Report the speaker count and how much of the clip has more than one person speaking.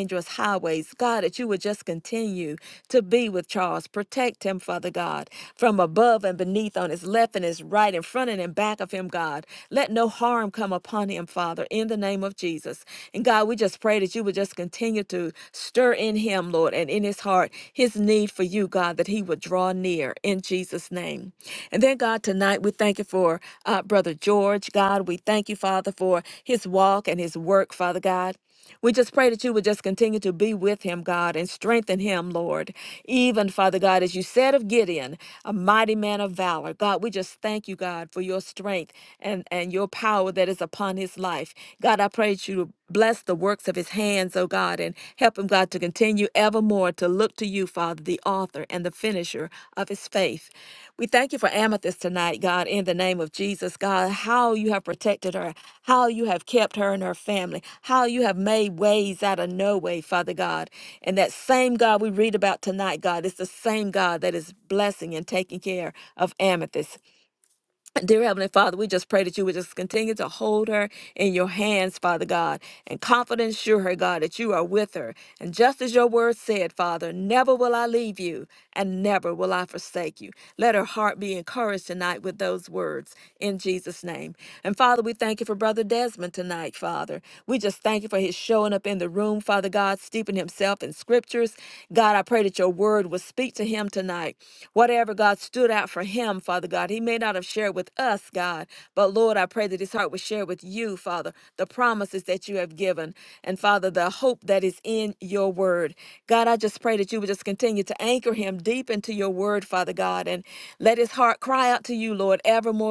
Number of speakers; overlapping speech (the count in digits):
1, no overlap